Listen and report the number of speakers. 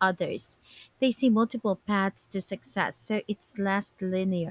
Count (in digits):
1